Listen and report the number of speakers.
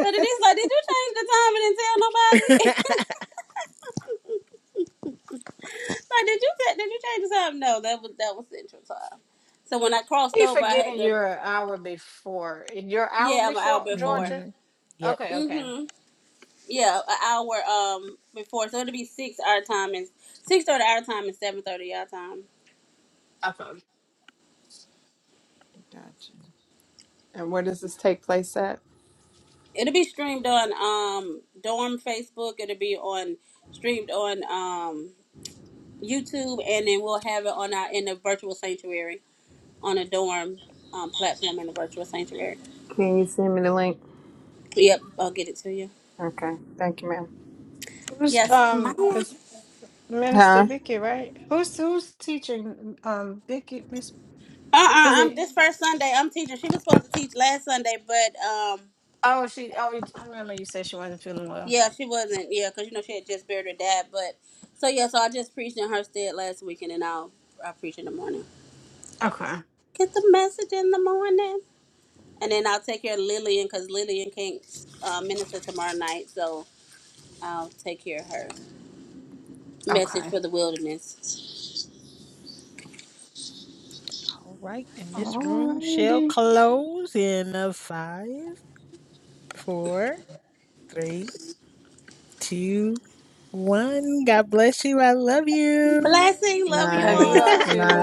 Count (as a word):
four